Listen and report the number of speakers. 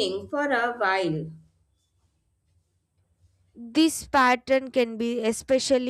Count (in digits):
2